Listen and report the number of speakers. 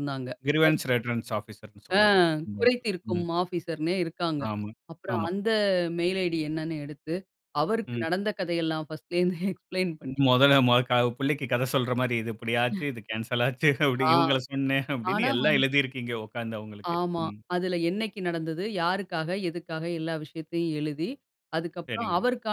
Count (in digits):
2